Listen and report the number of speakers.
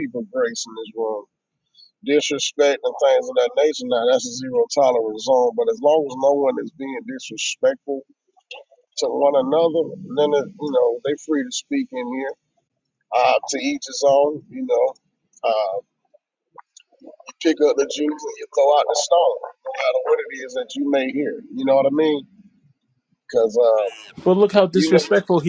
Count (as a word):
two